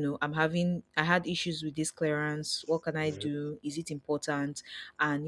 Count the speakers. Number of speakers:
one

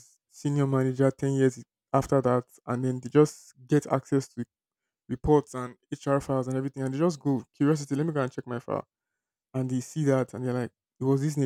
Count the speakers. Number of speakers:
one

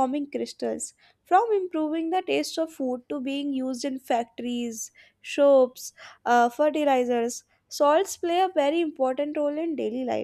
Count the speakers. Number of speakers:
one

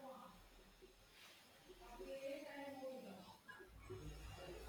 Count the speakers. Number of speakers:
zero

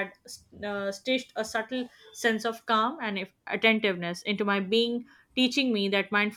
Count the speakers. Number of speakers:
one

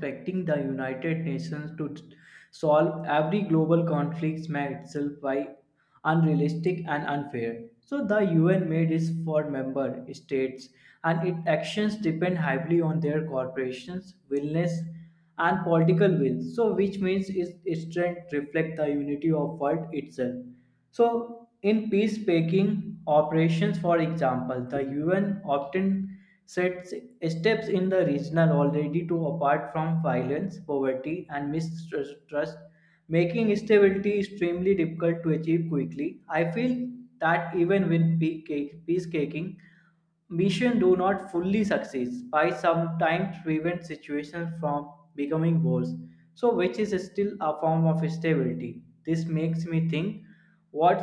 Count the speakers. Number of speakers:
one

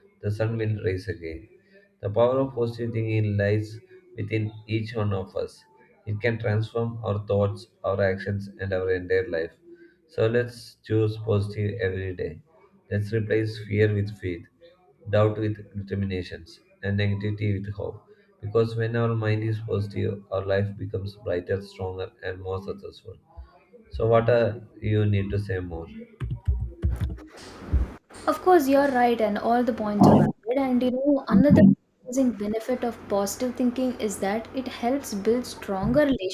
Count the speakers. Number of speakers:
two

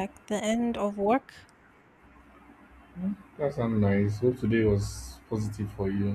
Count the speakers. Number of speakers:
two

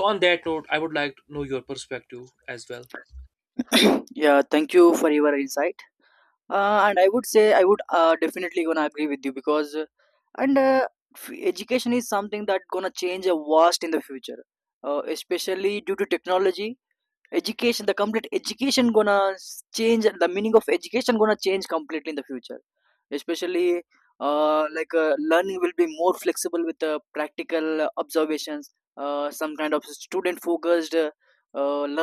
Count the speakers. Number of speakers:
two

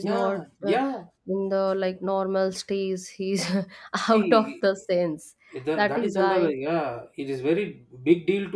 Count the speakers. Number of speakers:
two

